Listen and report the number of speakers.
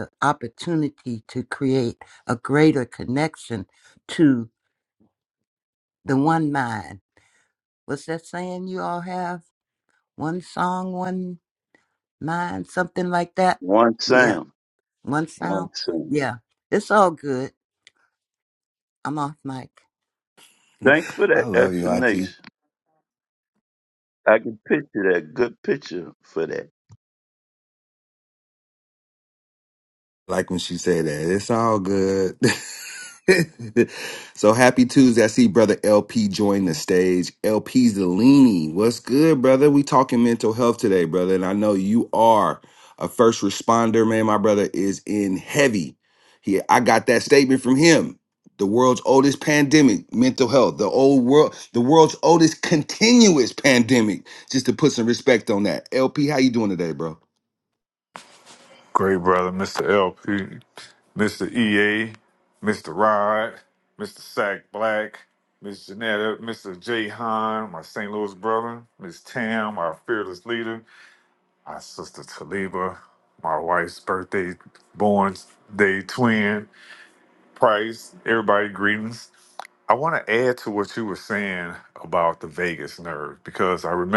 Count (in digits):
4